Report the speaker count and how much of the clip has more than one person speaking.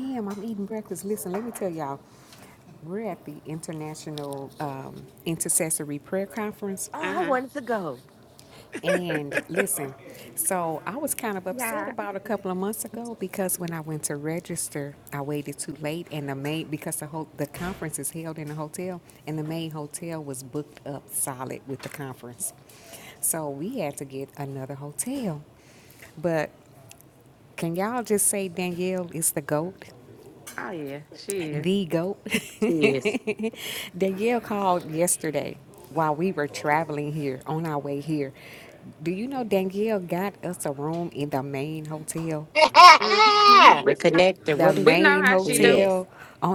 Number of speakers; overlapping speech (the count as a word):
four, about 7%